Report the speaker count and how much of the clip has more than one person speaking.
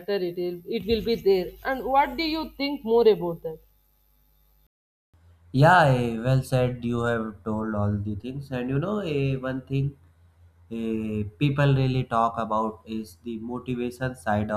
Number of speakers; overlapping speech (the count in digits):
2, no overlap